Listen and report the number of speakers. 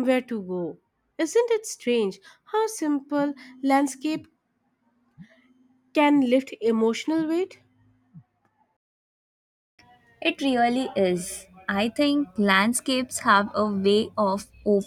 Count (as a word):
two